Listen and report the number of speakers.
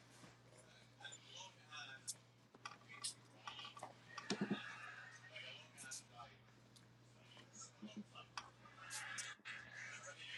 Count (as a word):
zero